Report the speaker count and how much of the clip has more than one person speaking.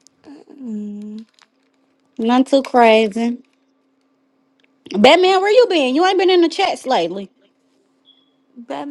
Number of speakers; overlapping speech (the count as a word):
two, no overlap